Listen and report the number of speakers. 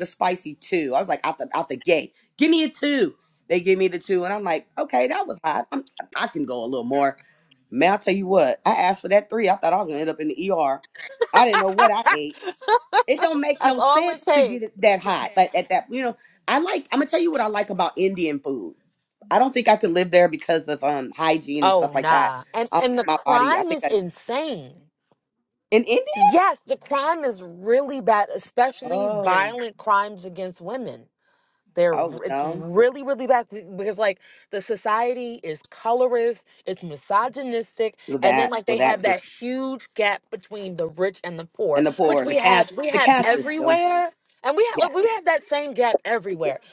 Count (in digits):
2